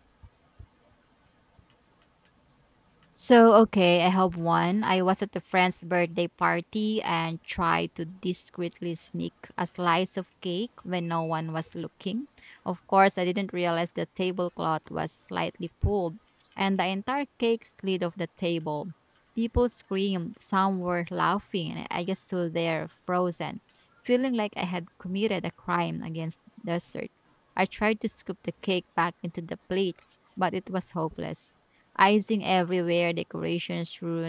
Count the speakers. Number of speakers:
1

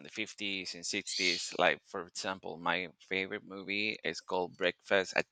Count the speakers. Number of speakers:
1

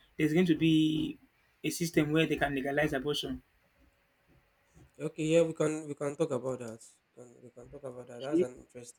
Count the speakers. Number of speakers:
2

